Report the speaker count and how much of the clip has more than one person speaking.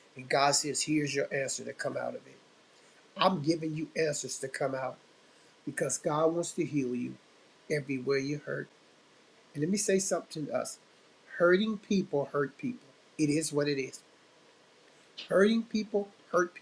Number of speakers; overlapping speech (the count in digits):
1, no overlap